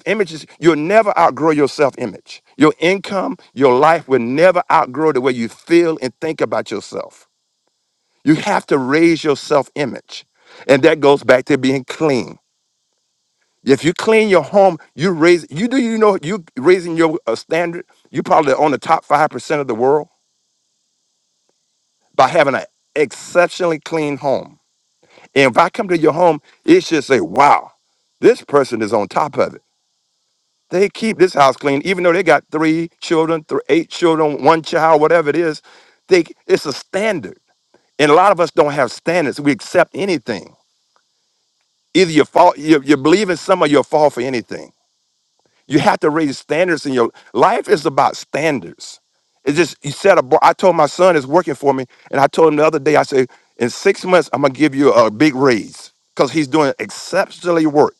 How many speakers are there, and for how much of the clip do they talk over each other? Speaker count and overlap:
1, no overlap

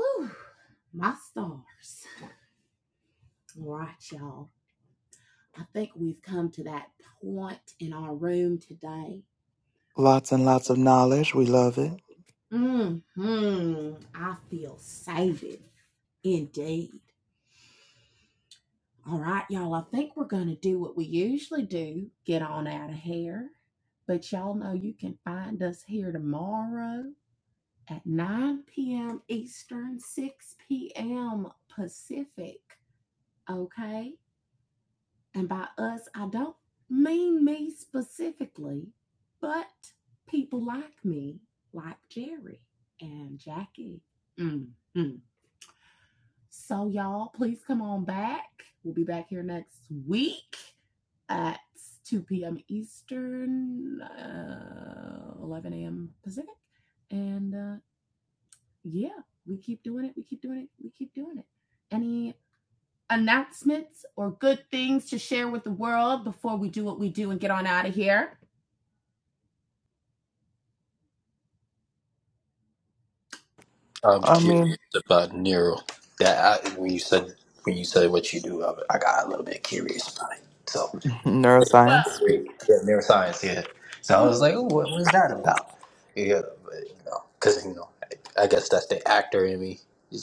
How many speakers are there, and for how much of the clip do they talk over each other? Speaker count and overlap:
3, about 1%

